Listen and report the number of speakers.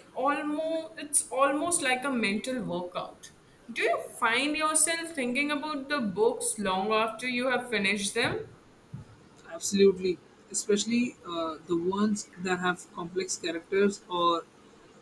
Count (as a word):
two